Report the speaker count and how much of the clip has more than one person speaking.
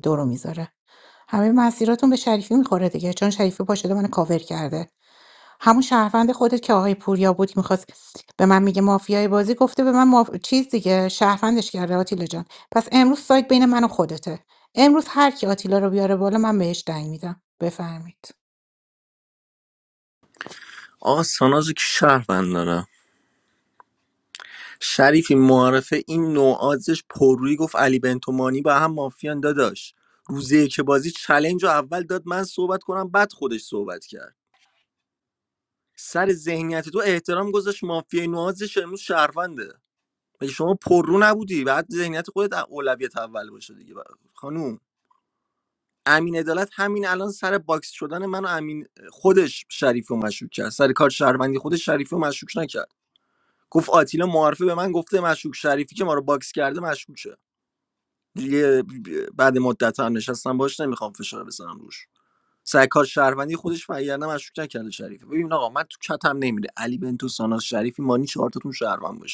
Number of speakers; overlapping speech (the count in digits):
2, no overlap